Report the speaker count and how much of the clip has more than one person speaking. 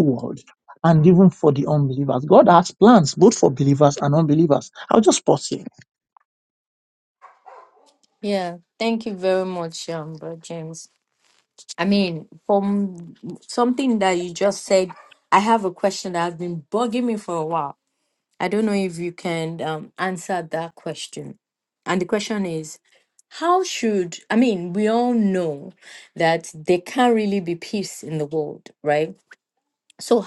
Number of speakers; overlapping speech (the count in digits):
2, no overlap